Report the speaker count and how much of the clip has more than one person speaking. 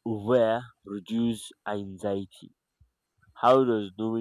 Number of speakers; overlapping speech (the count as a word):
one, no overlap